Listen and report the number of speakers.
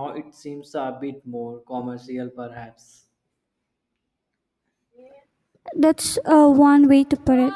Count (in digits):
2